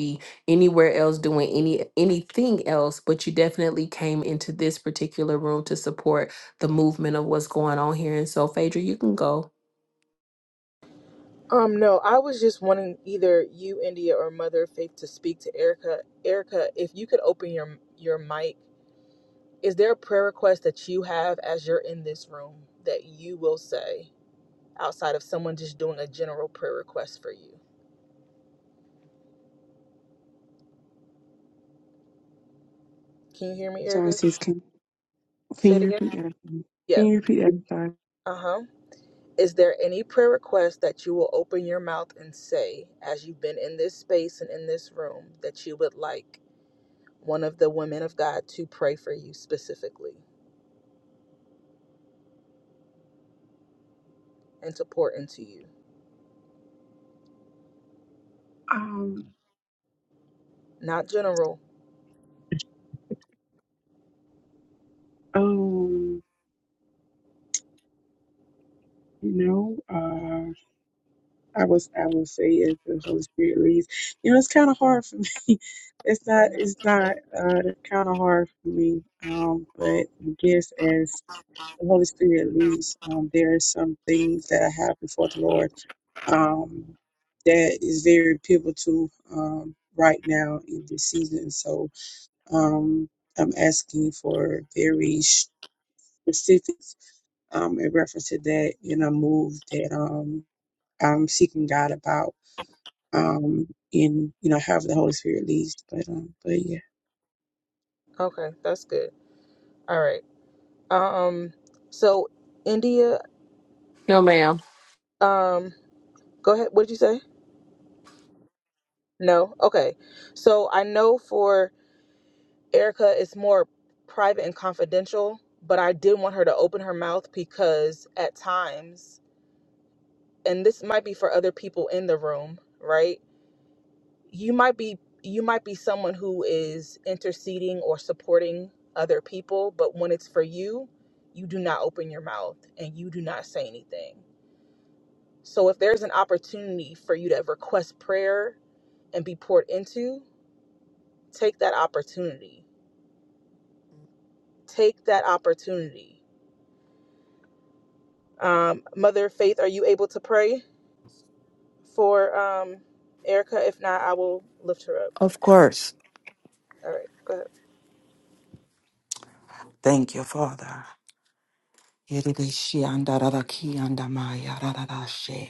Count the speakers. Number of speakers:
four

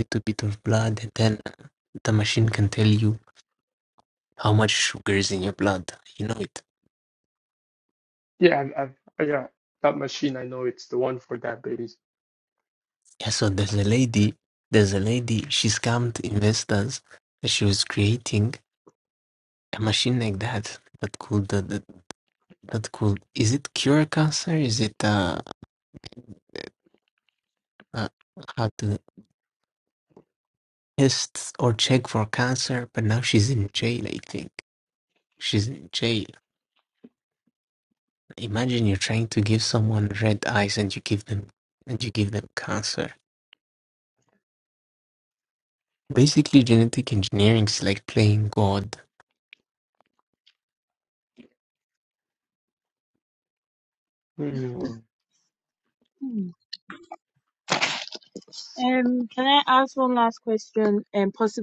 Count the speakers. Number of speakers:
three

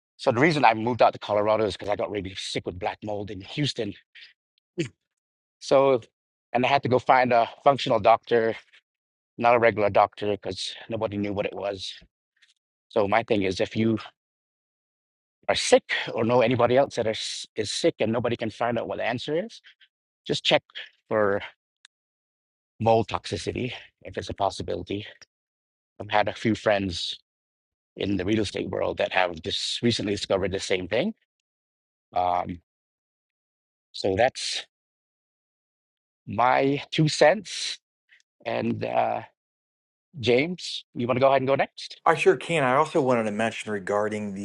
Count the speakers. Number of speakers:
two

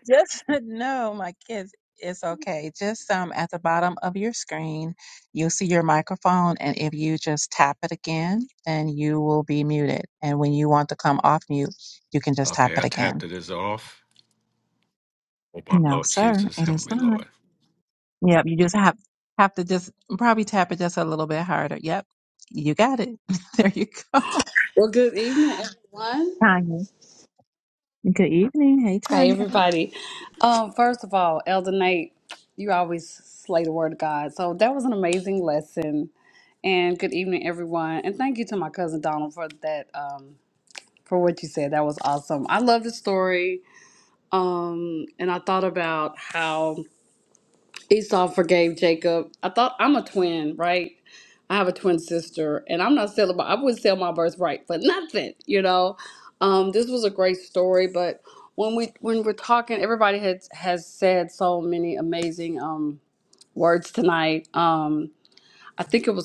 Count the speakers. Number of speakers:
three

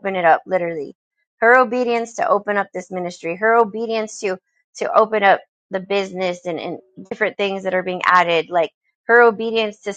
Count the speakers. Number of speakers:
one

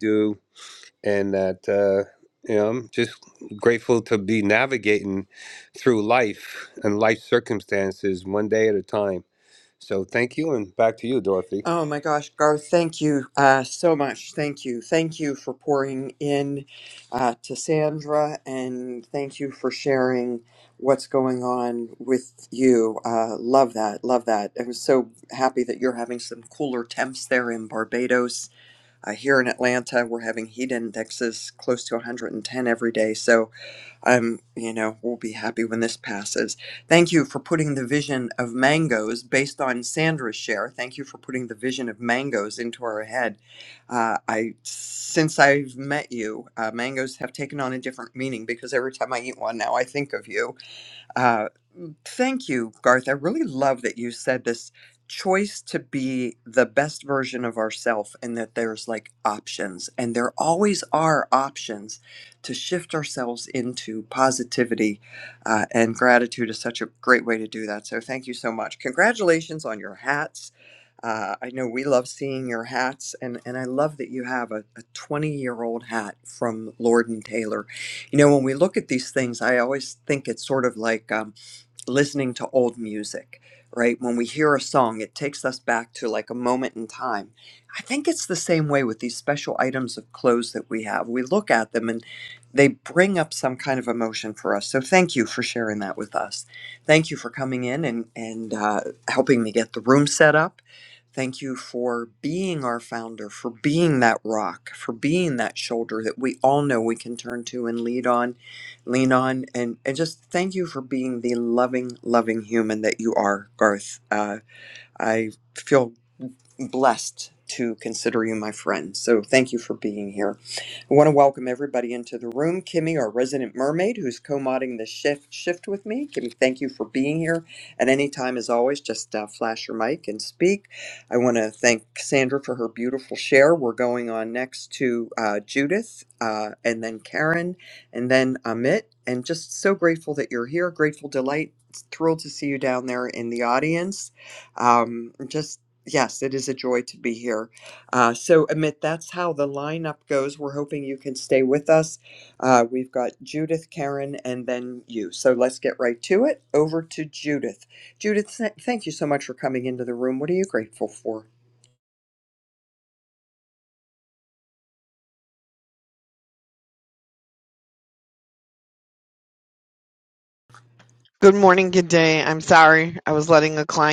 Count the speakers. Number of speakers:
three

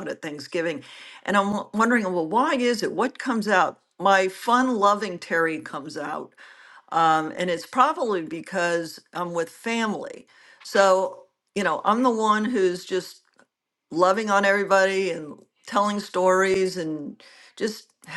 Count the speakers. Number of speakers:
one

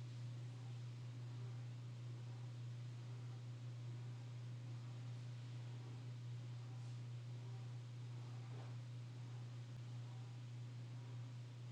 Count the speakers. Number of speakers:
zero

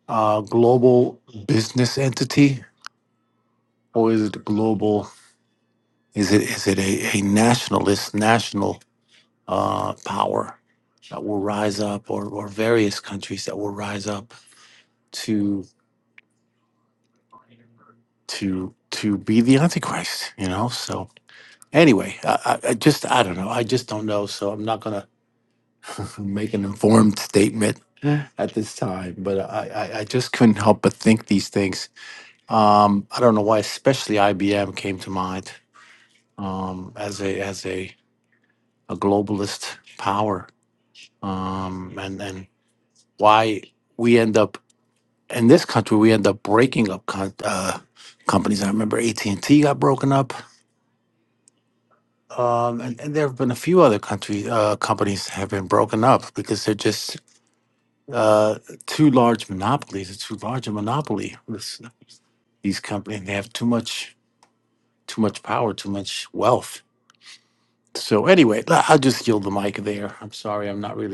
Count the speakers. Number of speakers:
one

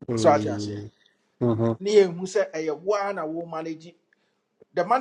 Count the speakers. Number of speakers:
two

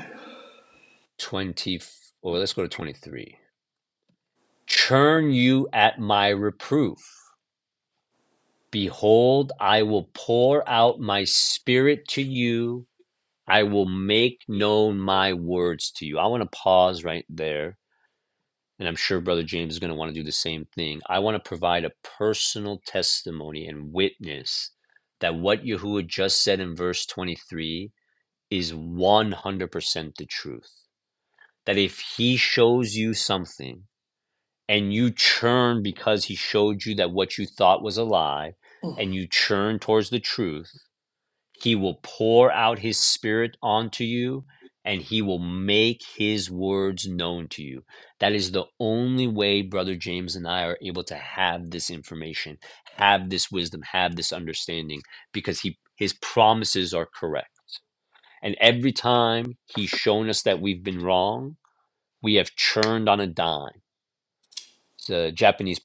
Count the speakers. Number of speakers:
one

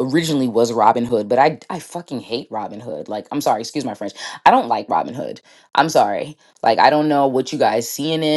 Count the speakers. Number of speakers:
one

